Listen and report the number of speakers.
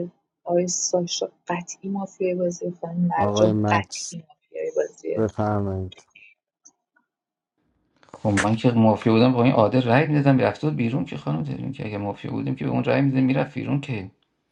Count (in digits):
3